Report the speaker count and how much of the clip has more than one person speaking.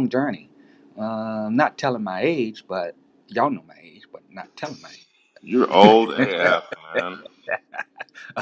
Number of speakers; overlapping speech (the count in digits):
2, about 3%